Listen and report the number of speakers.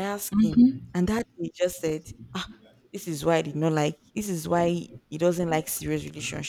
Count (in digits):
1